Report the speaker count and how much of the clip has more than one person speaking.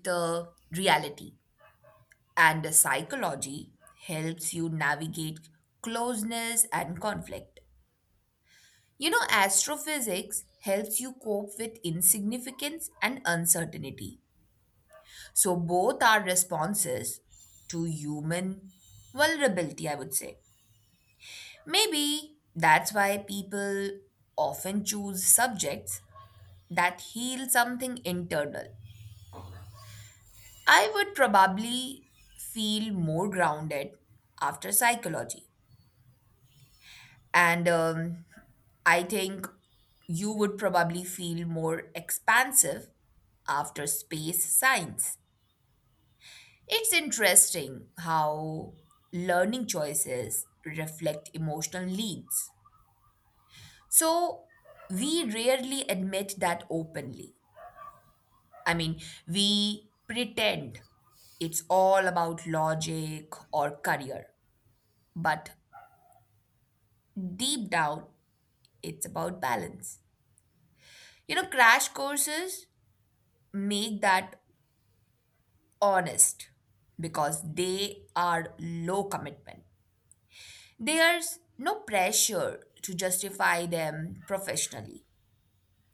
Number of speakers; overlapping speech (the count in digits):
1, no overlap